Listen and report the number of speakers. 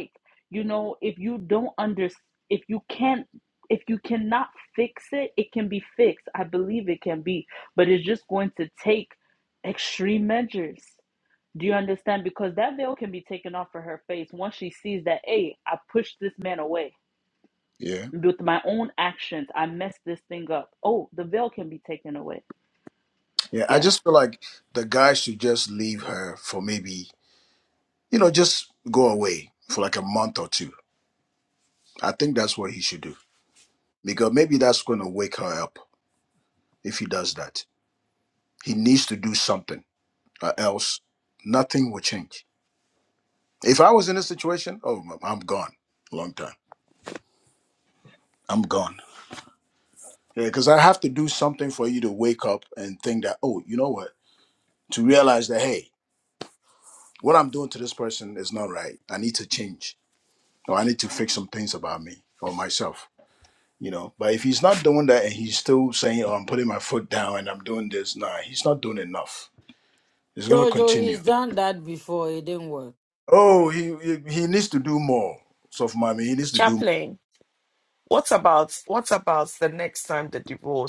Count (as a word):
four